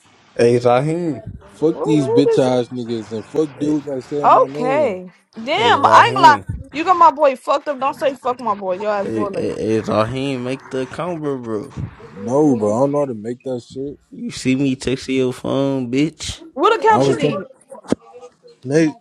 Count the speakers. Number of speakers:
three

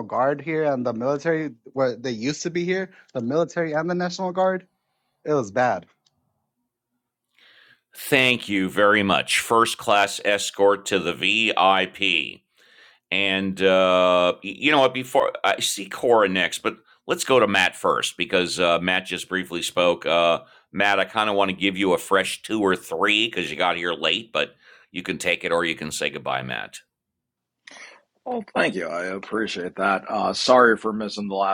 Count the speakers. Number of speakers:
three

